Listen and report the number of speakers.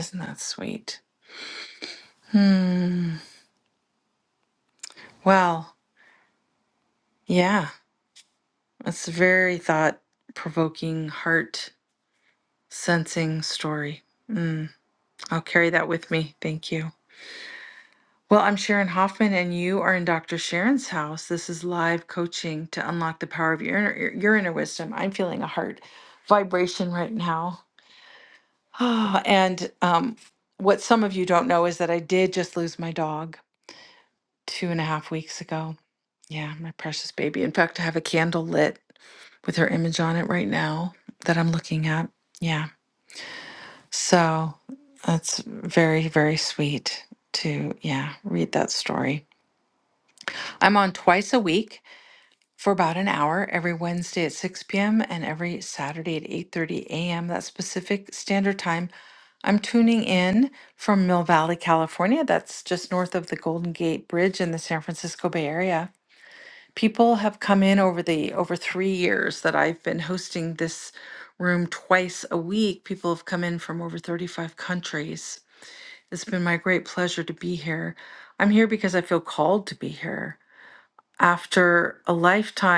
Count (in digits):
1